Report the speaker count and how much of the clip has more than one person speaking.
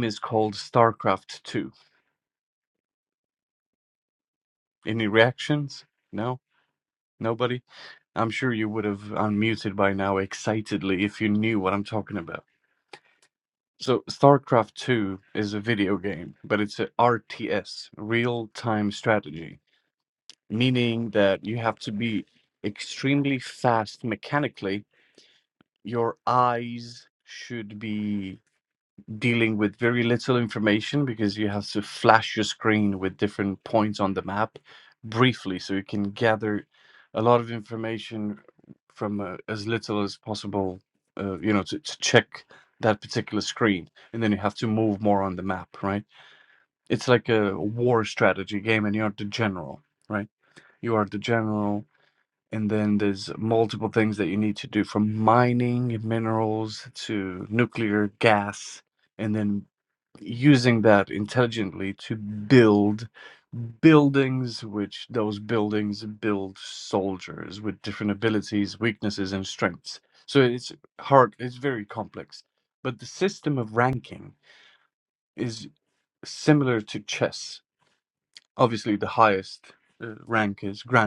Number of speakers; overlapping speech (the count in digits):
1, no overlap